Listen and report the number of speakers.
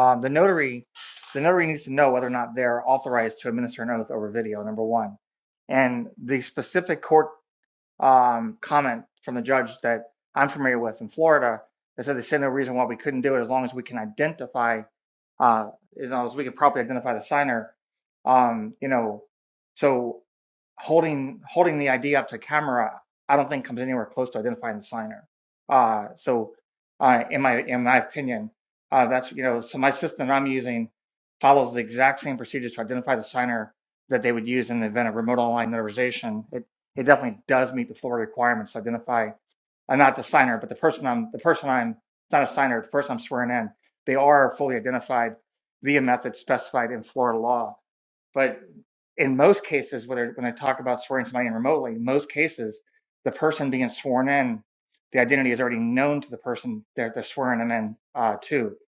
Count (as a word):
one